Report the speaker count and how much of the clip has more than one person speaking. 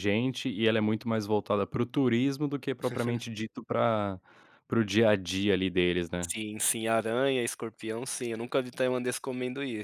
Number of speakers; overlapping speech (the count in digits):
2, under 1%